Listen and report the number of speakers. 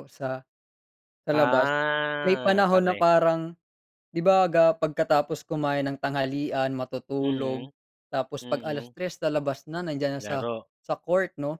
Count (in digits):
2